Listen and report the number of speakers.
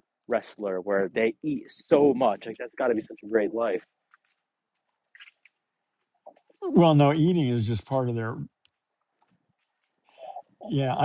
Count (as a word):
two